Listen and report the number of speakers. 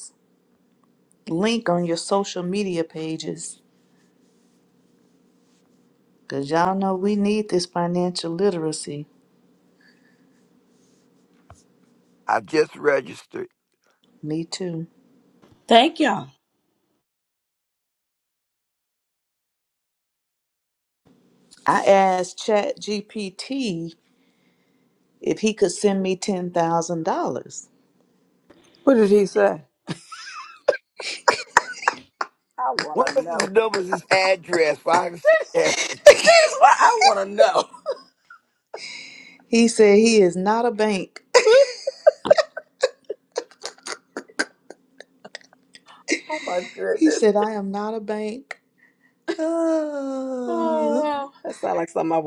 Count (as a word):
three